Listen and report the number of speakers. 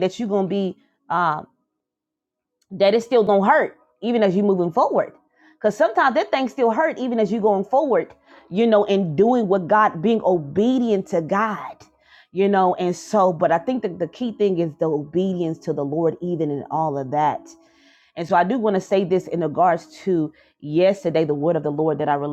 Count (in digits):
1